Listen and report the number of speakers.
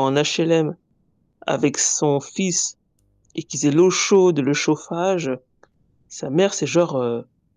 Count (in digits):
1